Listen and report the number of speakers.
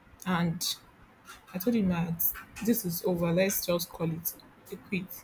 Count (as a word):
one